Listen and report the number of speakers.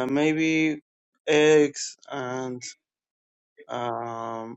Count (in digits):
1